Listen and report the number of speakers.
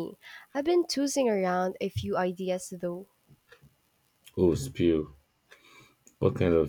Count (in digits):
2